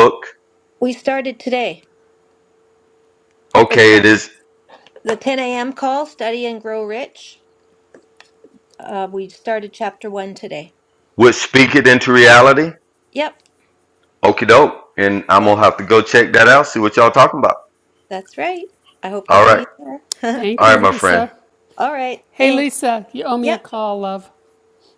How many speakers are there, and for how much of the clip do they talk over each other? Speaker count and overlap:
3, about 9%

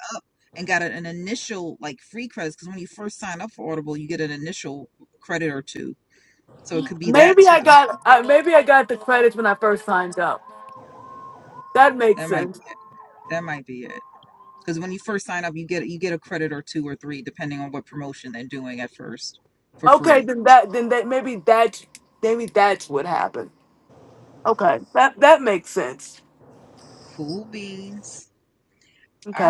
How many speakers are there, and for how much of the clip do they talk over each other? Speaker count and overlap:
2, about 5%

